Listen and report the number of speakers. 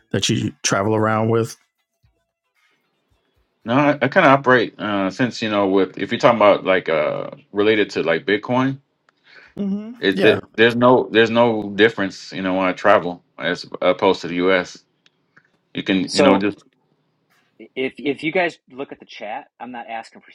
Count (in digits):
3